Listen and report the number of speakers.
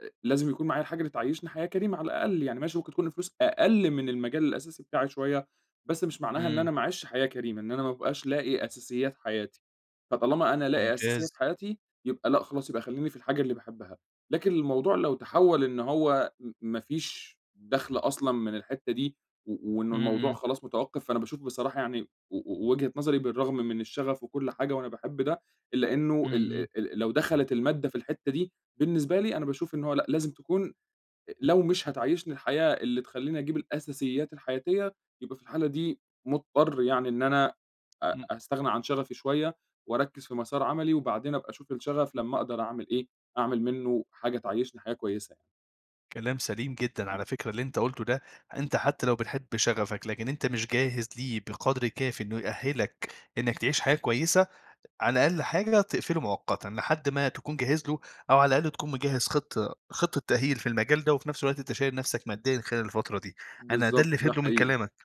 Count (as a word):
two